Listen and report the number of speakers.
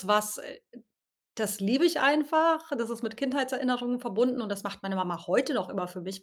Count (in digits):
1